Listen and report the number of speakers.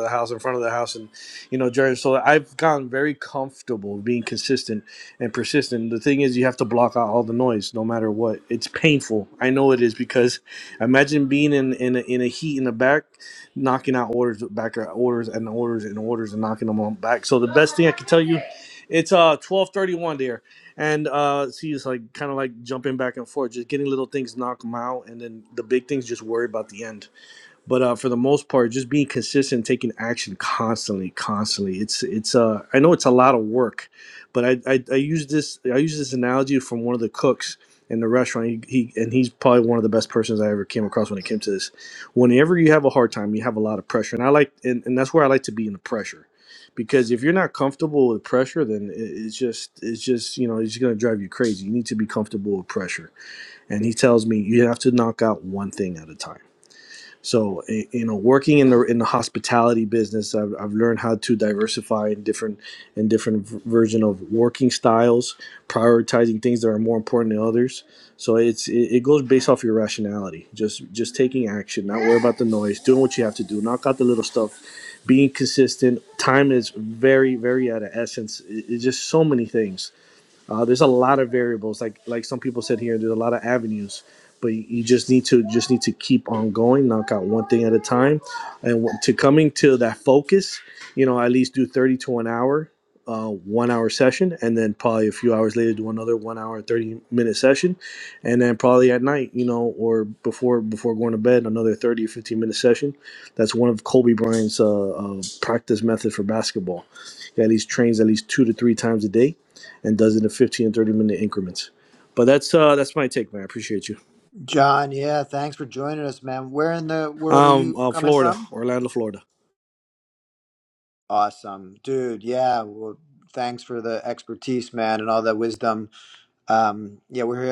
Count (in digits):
2